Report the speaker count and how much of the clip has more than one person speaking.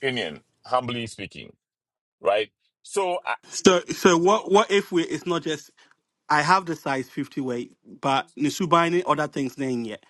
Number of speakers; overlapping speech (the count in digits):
2, no overlap